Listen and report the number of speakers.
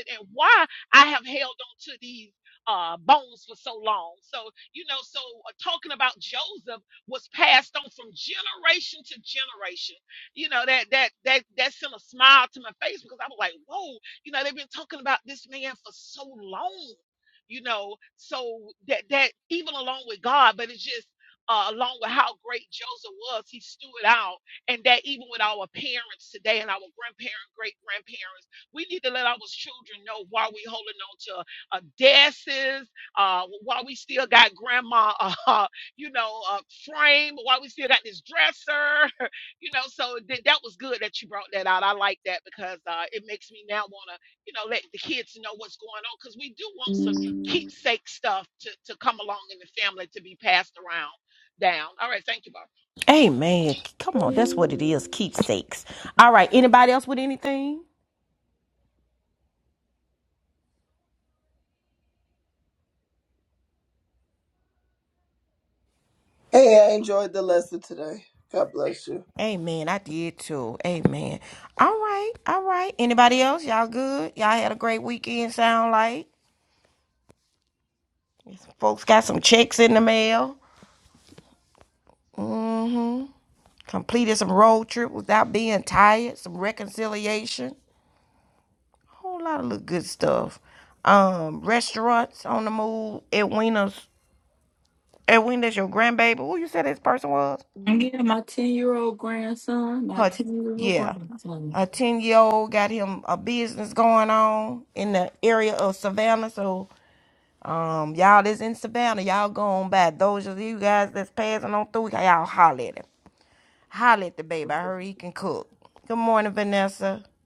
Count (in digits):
4